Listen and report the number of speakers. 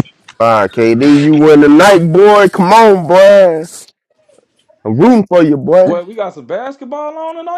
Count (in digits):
2